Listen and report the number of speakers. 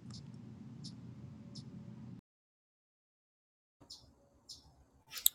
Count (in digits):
0